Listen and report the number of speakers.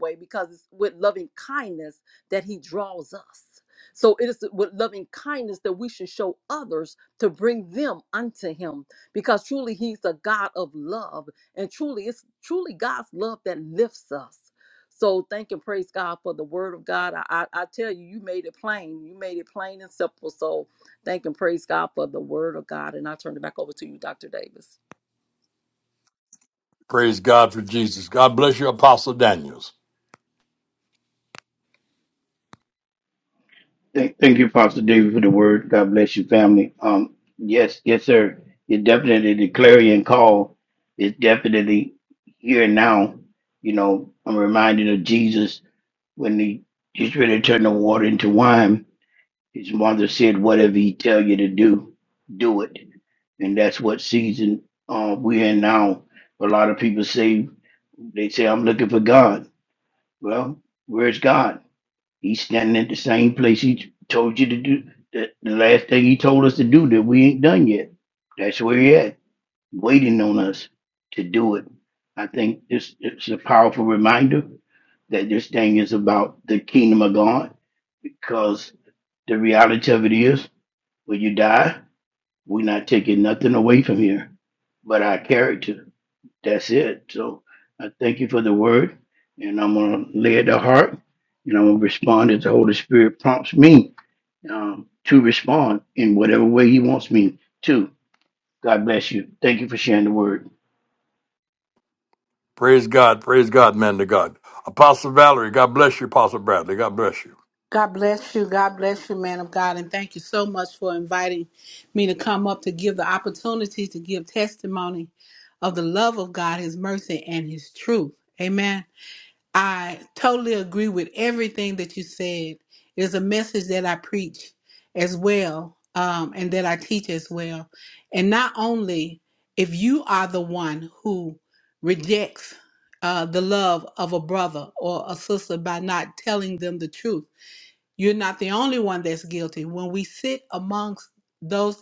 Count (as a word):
four